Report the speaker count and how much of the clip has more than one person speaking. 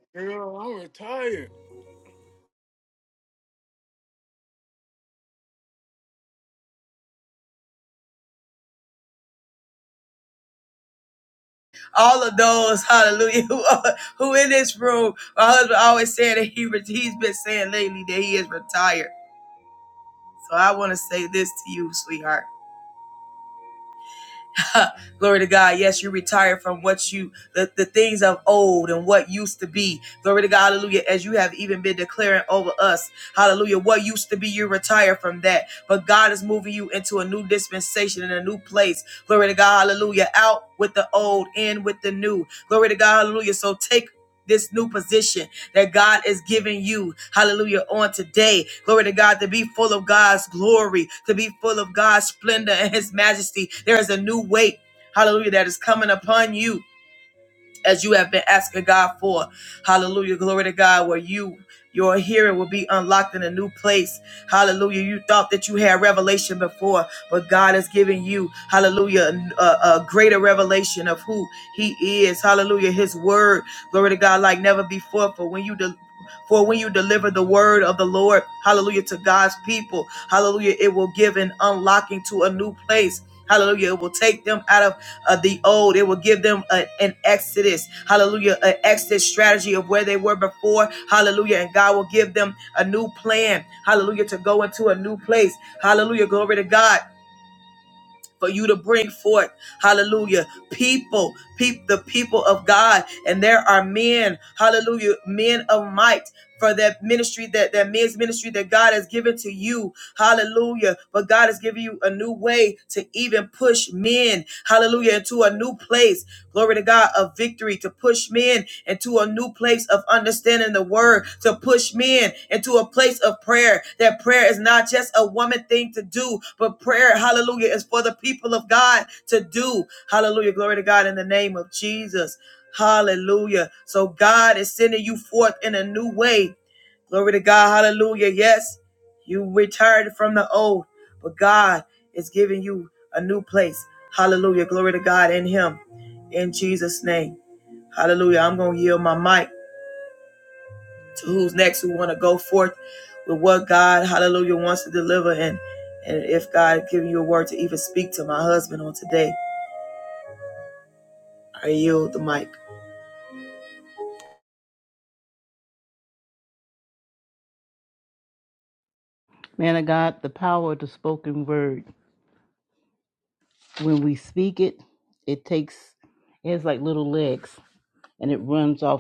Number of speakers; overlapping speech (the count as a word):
three, no overlap